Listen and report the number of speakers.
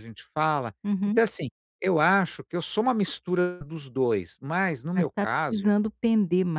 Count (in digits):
2